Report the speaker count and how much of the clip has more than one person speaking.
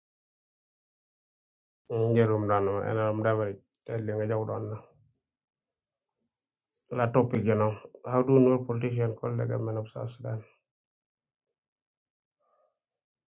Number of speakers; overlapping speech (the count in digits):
1, no overlap